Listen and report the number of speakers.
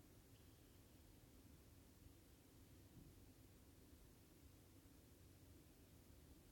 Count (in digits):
0